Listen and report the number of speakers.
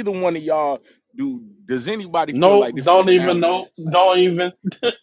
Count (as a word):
two